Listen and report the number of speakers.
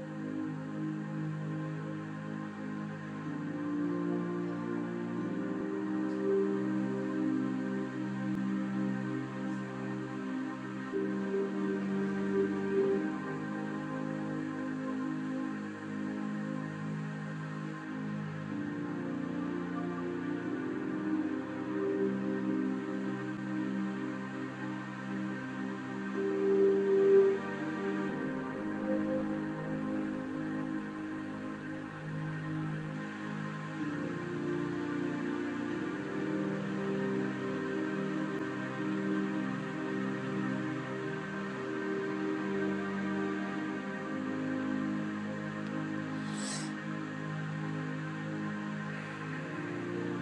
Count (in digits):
0